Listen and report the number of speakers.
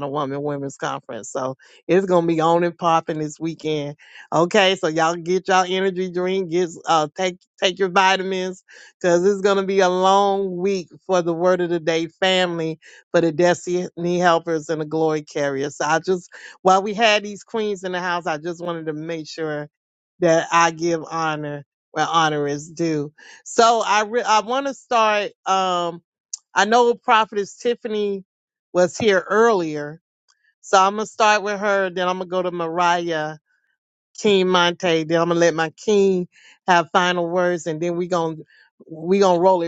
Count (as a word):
one